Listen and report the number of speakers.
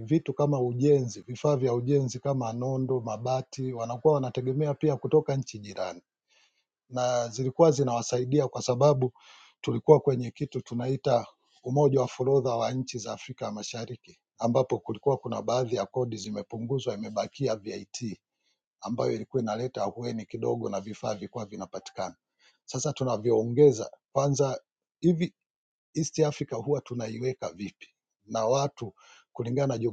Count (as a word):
one